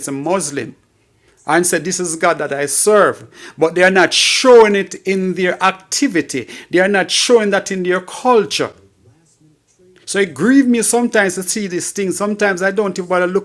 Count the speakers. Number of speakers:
1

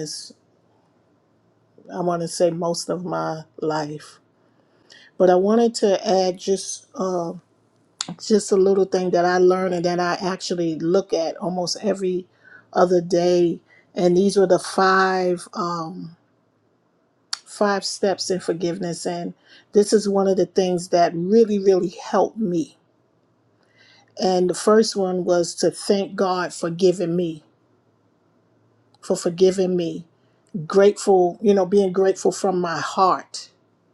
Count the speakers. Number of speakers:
1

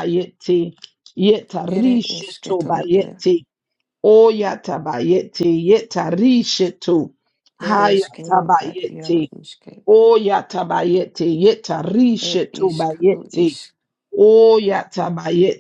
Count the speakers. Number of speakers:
2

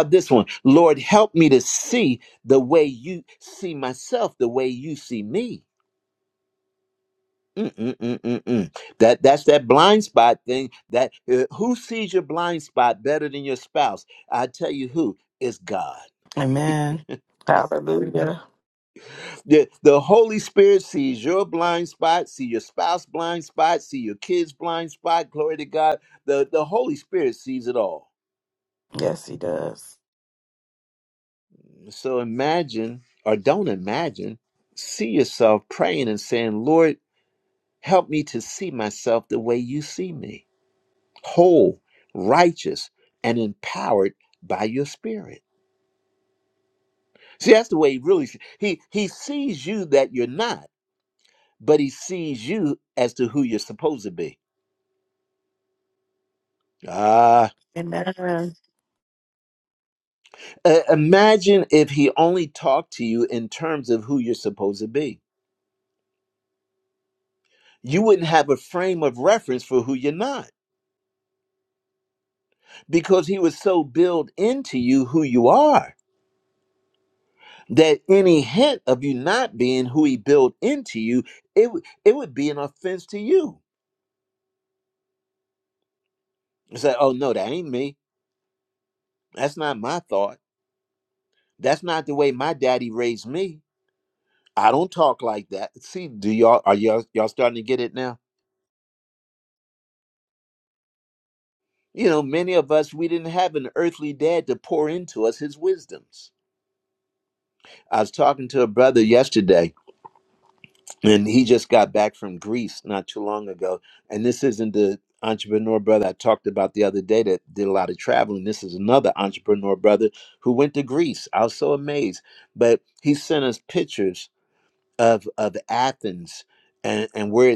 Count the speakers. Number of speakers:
2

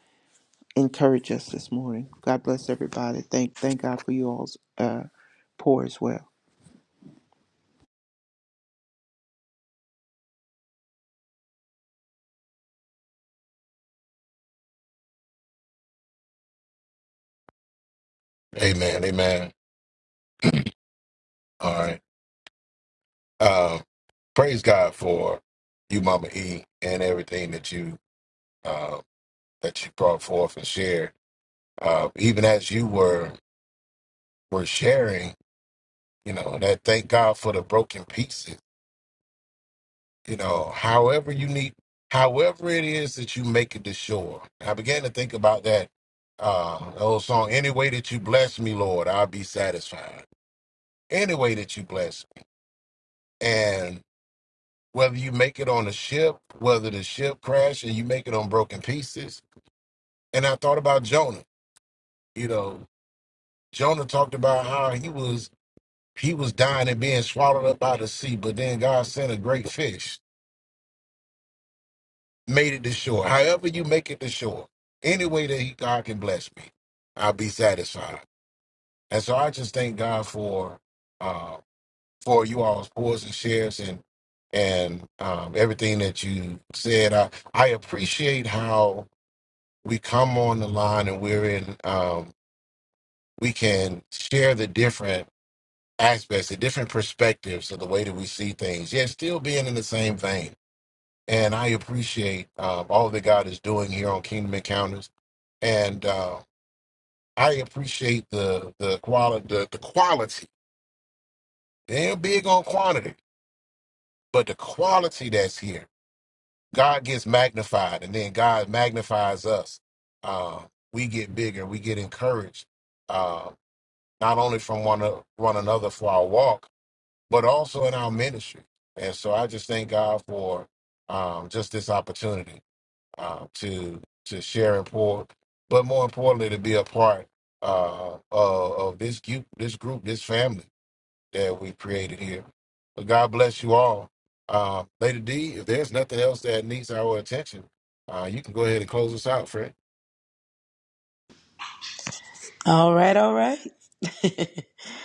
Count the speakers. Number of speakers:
3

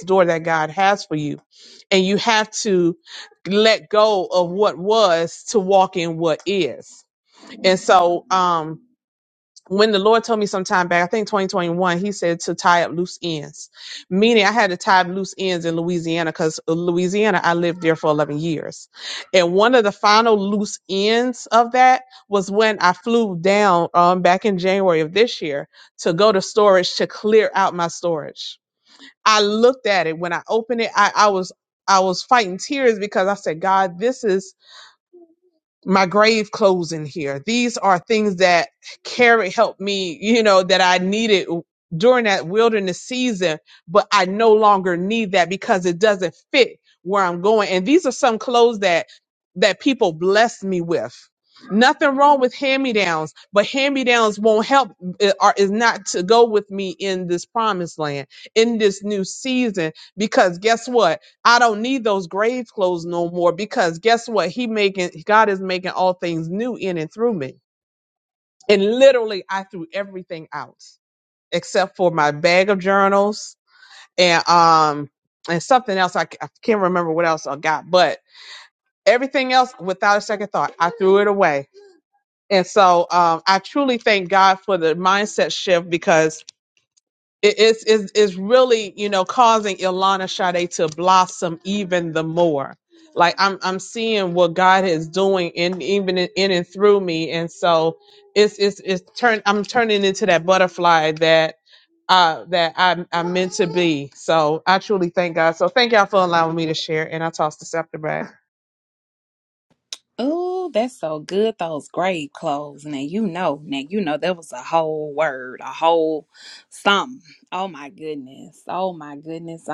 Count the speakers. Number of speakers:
2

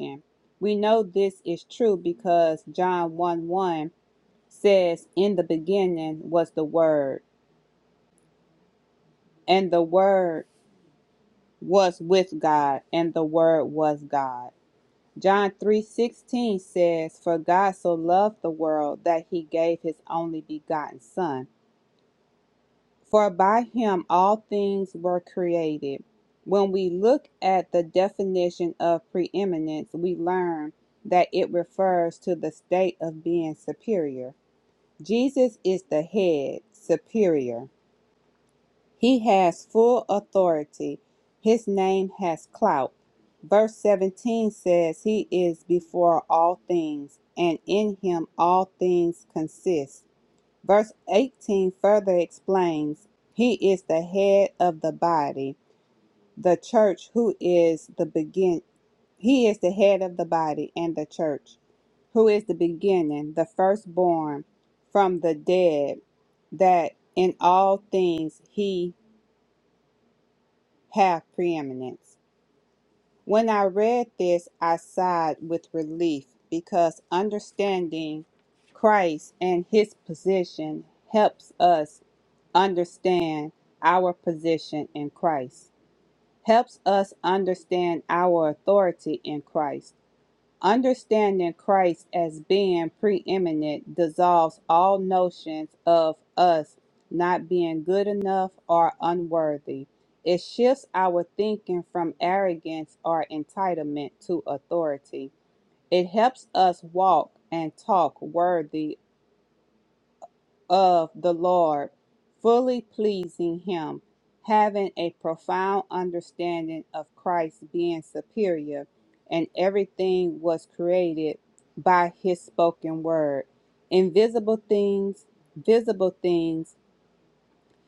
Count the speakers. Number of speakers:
1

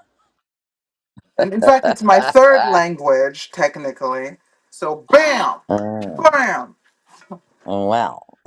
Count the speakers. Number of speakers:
2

